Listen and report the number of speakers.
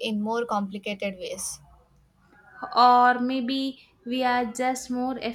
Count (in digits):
2